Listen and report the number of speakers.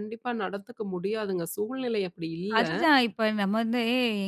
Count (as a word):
two